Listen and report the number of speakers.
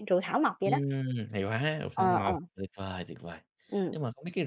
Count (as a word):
two